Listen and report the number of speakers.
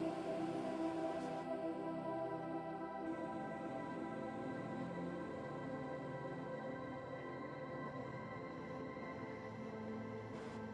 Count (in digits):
0